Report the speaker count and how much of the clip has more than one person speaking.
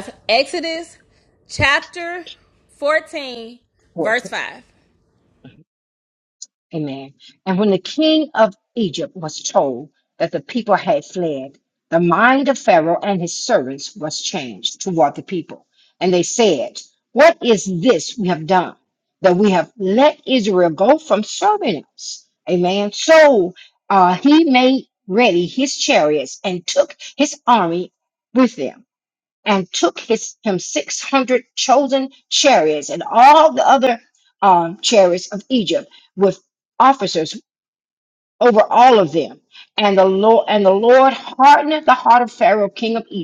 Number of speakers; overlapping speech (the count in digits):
2, no overlap